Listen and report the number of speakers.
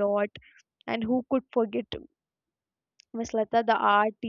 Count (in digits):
1